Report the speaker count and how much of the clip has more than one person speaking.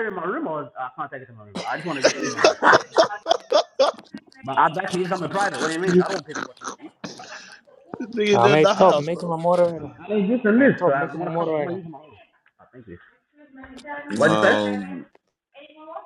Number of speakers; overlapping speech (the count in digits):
3, about 17%